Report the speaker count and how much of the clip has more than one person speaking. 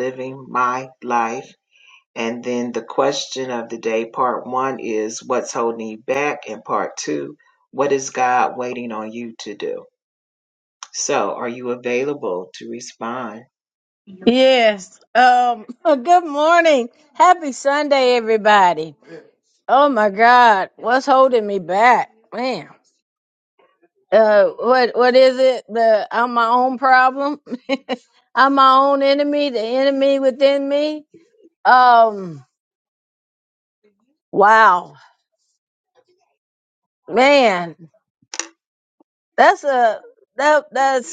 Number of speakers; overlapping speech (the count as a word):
two, no overlap